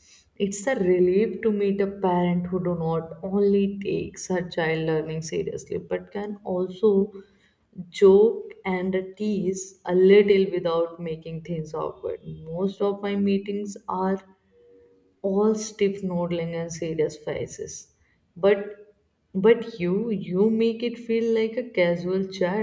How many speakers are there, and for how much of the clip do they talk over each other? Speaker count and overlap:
one, no overlap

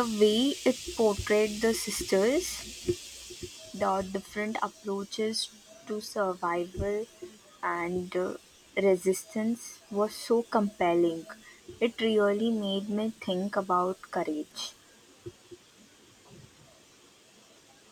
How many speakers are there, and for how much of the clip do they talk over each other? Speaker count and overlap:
one, no overlap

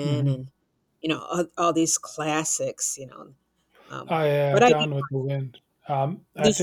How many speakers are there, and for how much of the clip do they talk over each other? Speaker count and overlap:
two, about 12%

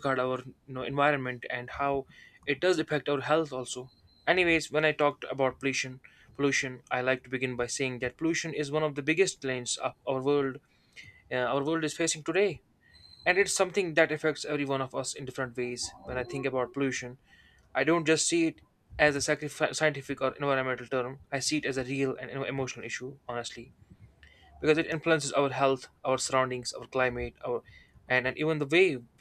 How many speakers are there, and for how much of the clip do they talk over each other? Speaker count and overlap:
one, no overlap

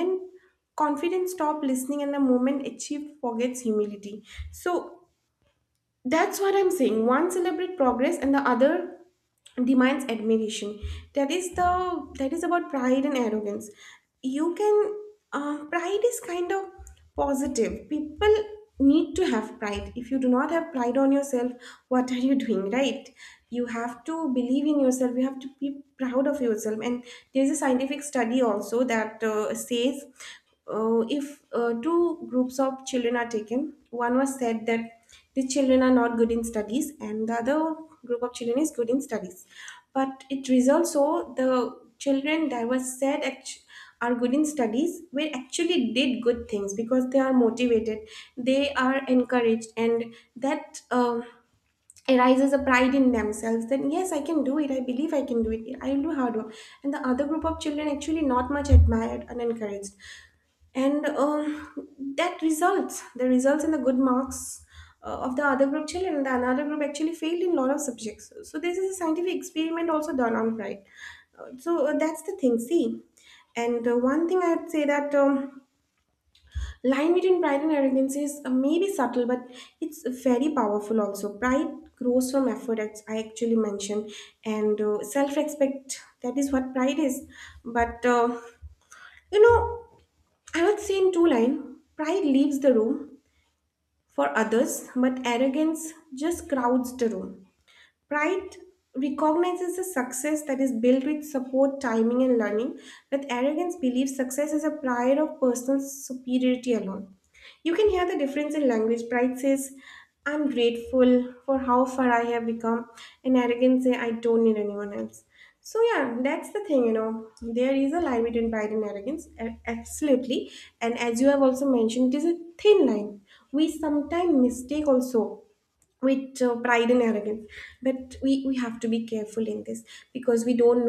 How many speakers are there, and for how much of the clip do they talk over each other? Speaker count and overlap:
one, no overlap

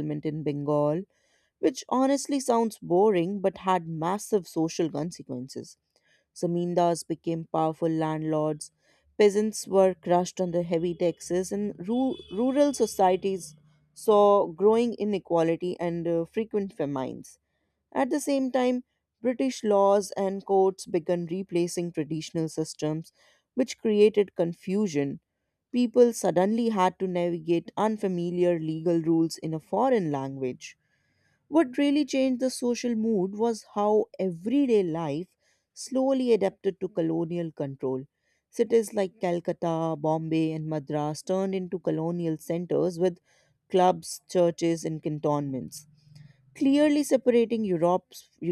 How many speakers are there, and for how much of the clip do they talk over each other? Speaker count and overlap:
one, no overlap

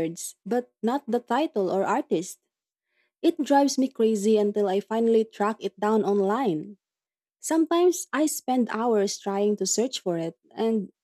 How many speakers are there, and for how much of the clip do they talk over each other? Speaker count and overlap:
one, no overlap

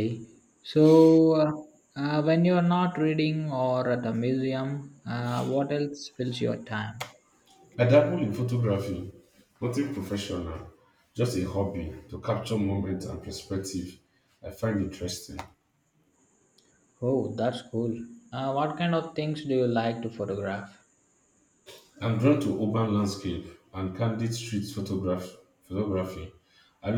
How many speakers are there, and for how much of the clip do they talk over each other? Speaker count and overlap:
two, no overlap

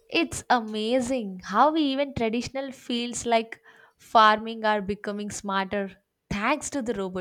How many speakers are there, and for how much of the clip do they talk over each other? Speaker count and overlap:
one, no overlap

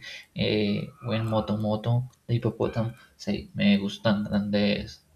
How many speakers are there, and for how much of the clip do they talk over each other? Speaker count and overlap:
one, no overlap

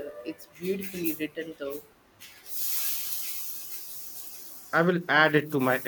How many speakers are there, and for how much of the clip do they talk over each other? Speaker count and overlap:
two, no overlap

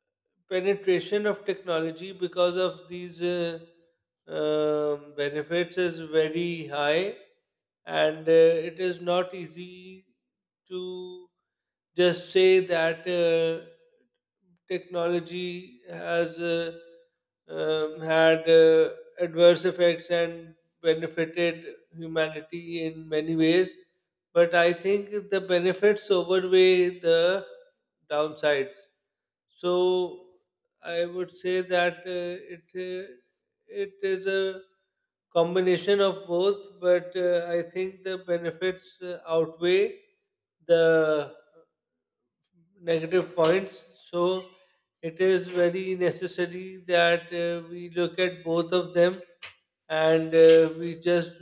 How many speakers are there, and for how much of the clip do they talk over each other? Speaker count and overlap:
one, no overlap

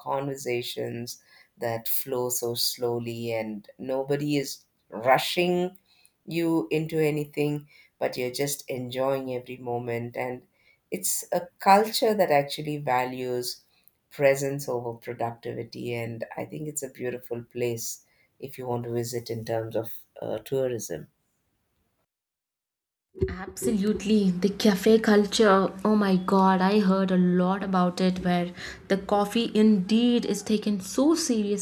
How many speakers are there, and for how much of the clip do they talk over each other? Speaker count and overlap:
two, no overlap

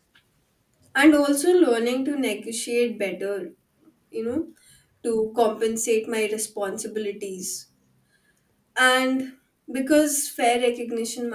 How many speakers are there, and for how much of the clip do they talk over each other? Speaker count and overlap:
one, no overlap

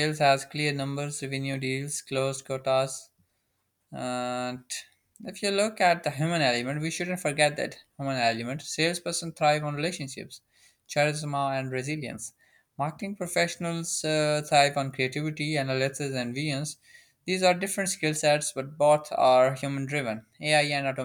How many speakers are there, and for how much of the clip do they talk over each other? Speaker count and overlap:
one, no overlap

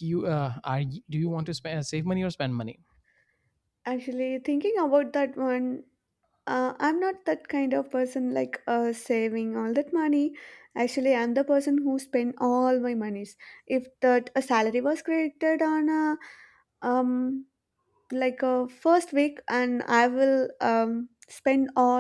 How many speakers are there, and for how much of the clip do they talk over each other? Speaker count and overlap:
two, no overlap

